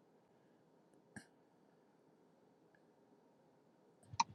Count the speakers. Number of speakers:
zero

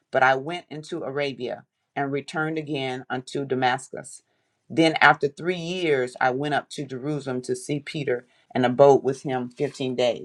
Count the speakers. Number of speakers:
one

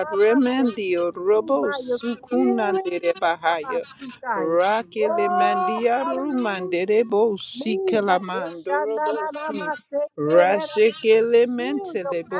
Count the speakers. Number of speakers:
two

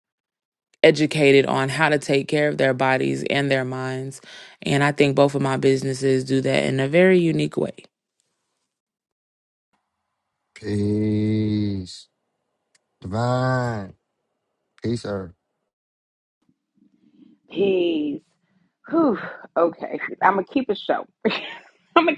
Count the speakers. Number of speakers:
three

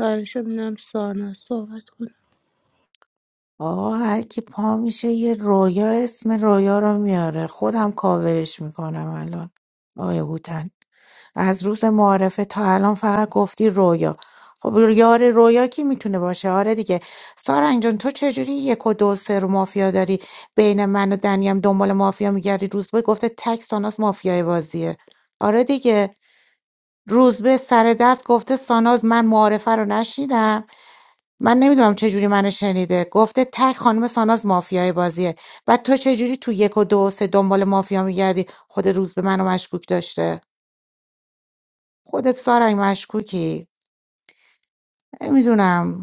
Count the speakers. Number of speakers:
two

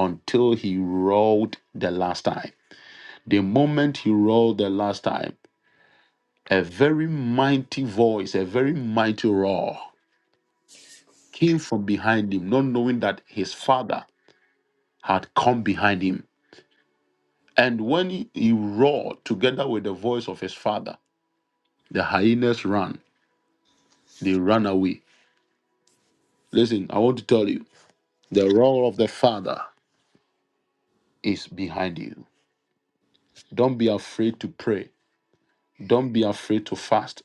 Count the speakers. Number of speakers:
one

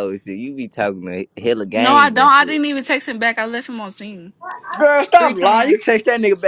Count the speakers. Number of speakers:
three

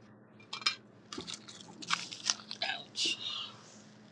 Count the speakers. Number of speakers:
zero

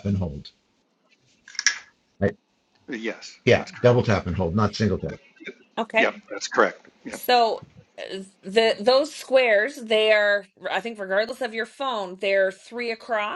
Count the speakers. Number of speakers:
three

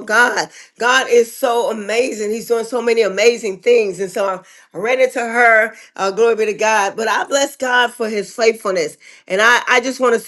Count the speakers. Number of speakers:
one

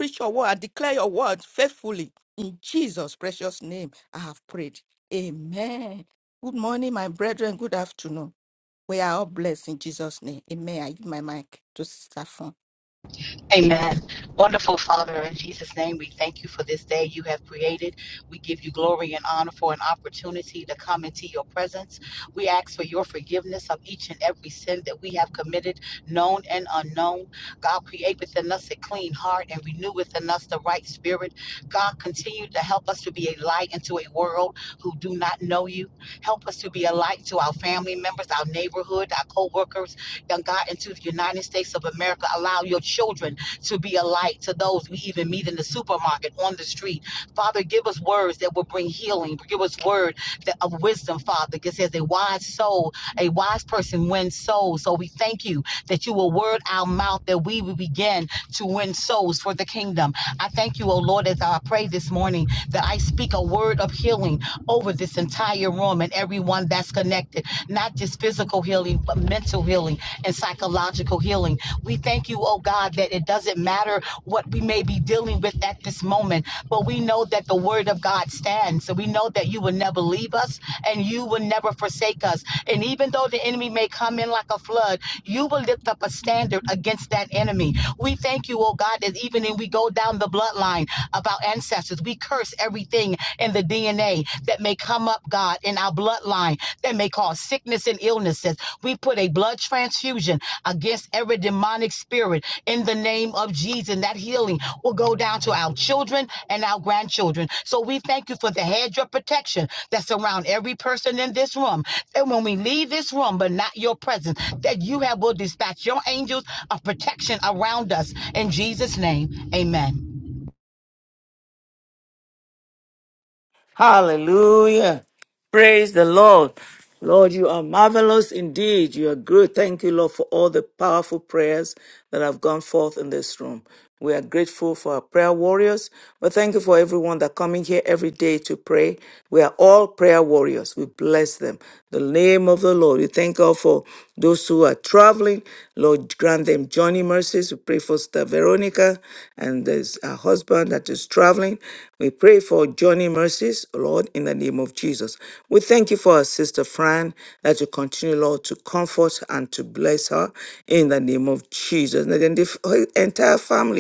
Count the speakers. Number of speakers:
three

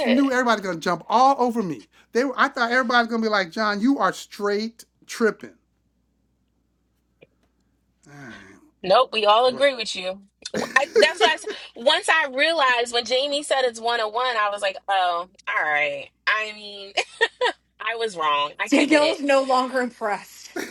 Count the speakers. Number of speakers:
three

